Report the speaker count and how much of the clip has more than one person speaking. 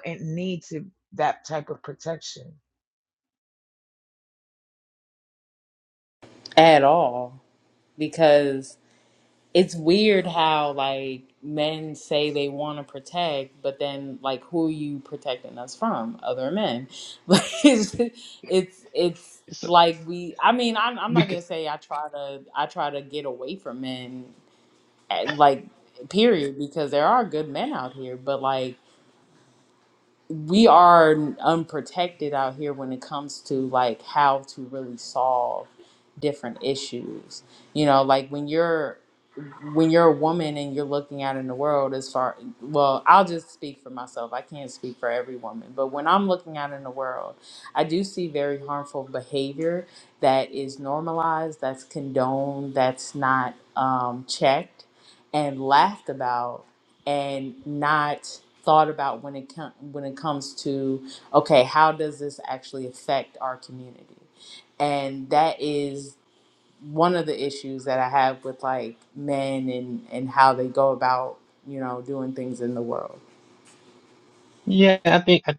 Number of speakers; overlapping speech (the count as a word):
three, under 1%